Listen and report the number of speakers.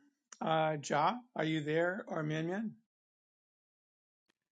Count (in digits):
1